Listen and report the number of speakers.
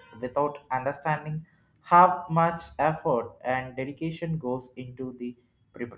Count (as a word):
one